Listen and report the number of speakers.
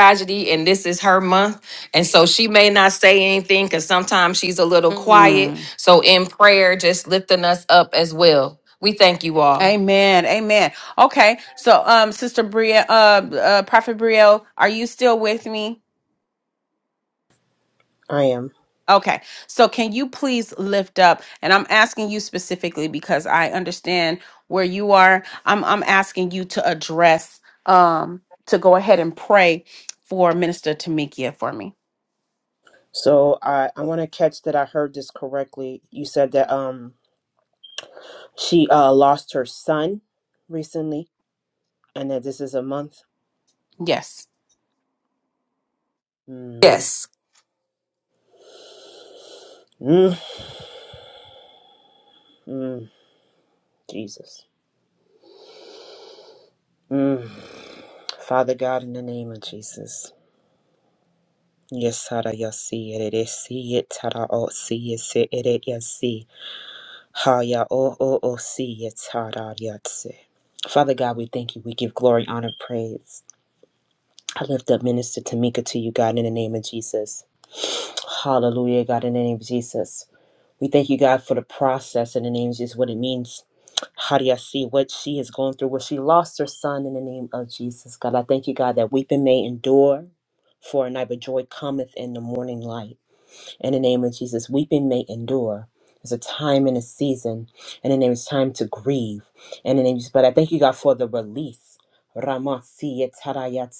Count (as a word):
three